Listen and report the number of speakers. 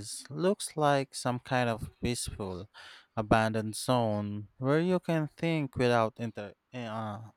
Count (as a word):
one